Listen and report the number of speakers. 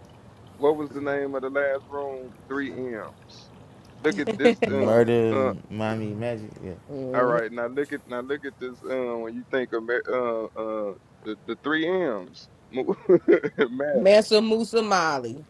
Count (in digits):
3